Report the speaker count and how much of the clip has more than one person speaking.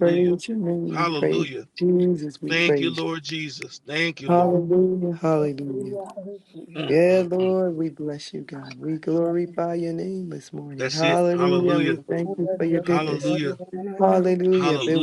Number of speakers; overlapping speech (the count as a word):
three, about 45%